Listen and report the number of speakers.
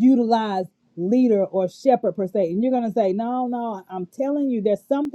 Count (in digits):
1